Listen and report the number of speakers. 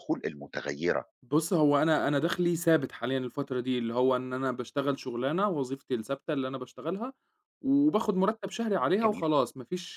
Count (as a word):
two